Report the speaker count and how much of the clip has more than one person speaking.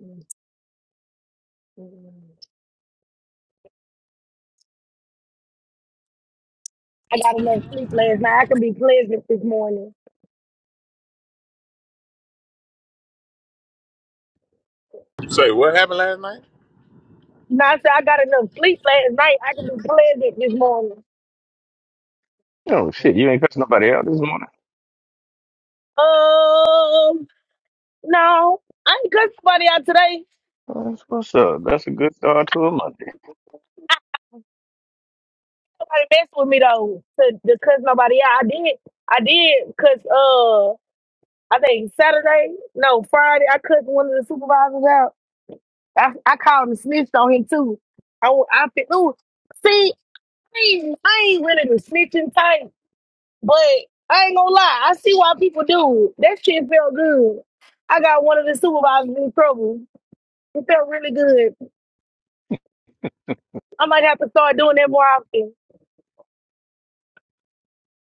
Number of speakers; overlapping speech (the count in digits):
3, no overlap